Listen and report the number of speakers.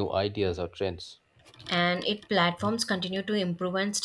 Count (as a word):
two